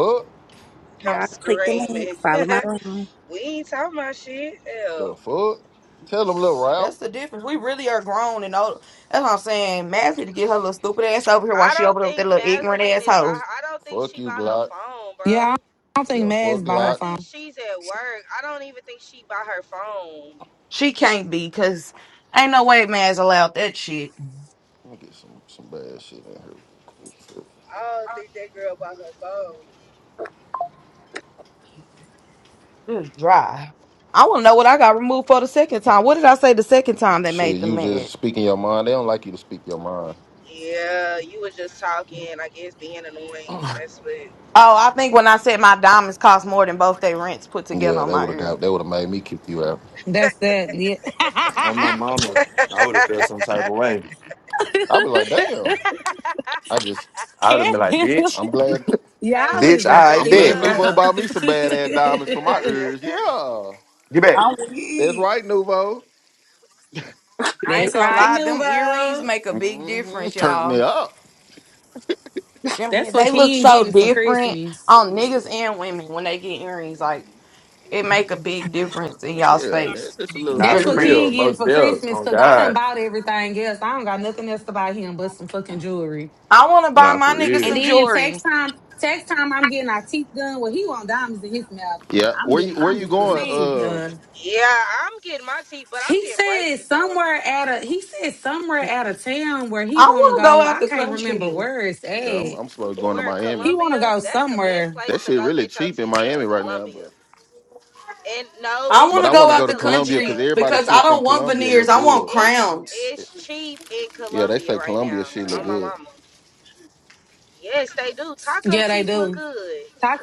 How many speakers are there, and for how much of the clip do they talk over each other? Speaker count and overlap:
6, about 29%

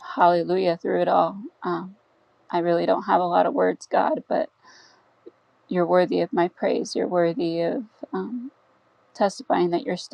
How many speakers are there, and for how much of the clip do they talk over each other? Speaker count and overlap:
1, no overlap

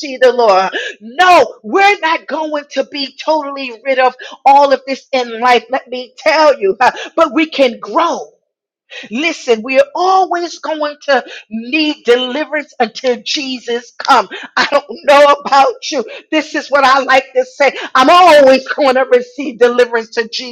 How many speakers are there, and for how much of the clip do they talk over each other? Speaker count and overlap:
1, no overlap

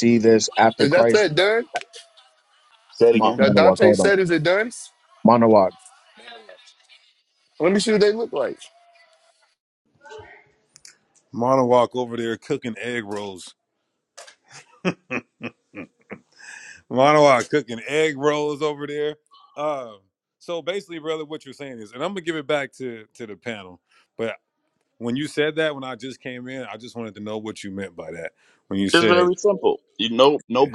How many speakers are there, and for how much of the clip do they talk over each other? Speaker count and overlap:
4, about 6%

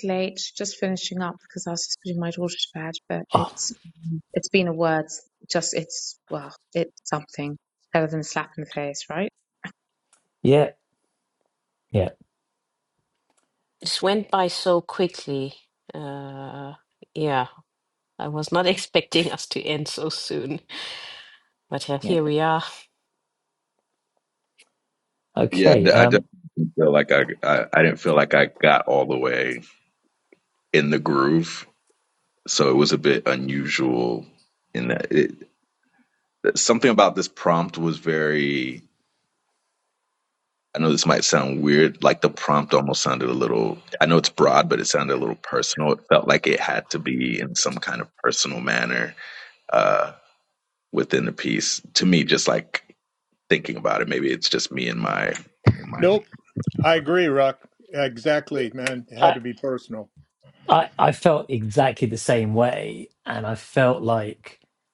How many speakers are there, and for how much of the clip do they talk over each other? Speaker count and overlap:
5, about 2%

